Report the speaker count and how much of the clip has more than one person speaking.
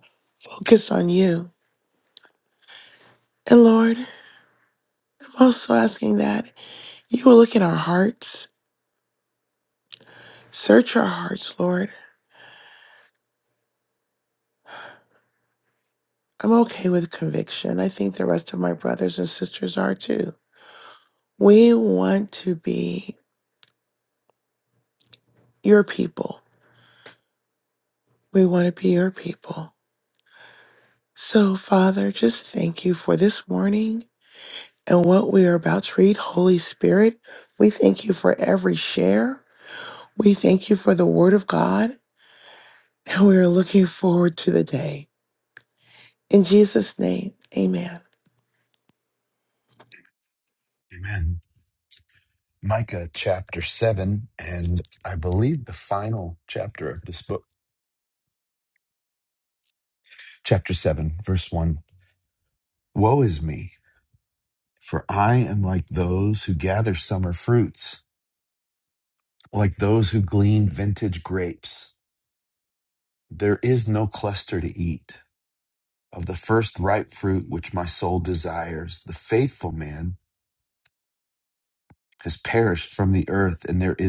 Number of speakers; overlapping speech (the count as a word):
two, no overlap